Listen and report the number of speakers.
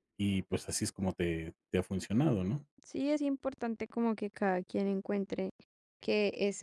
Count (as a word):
two